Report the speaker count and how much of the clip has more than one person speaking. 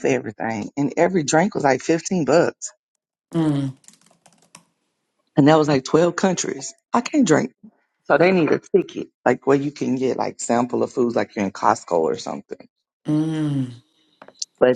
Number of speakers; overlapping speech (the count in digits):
2, no overlap